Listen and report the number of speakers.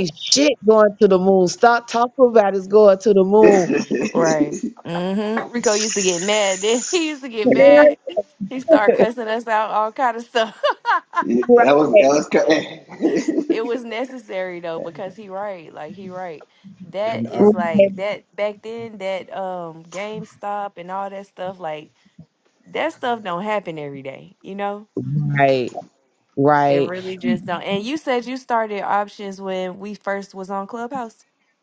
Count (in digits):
3